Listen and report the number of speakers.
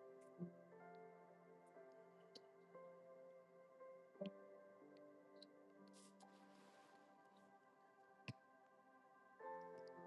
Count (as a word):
zero